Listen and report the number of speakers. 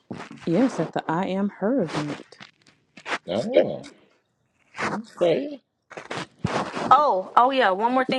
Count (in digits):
3